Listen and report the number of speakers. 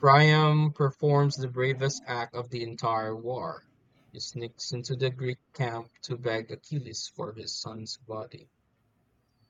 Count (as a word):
one